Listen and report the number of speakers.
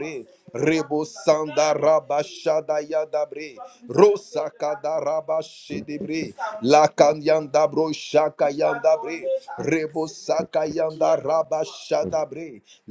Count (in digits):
1